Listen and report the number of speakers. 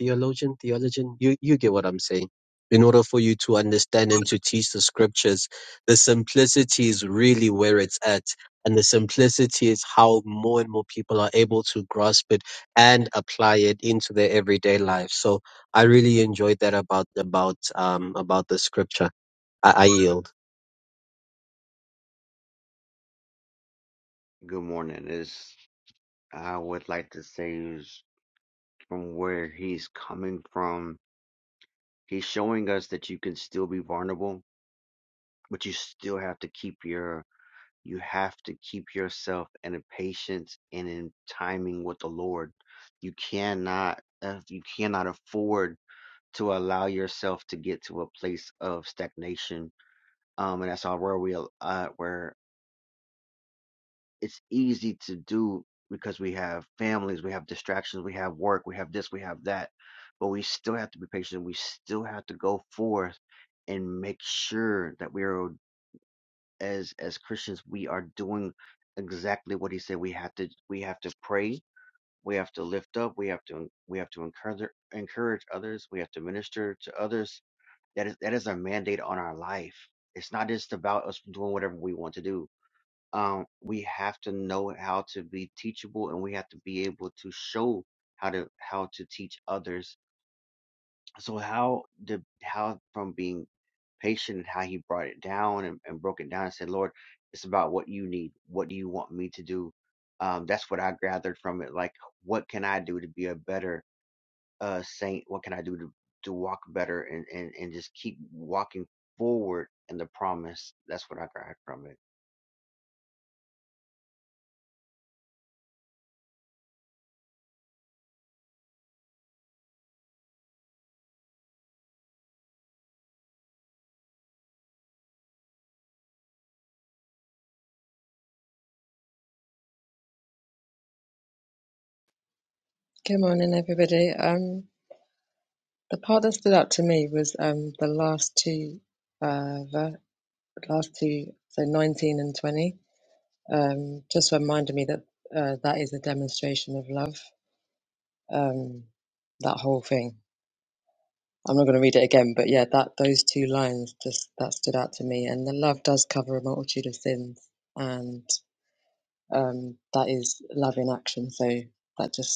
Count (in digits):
3